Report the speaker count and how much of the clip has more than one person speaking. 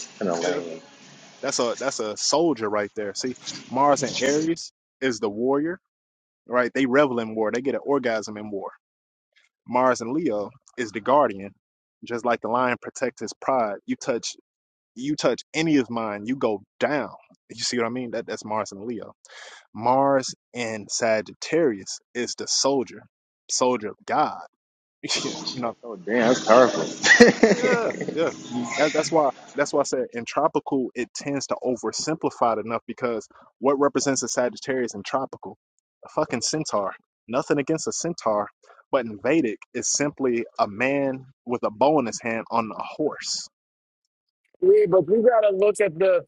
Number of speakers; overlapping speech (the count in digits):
3, under 1%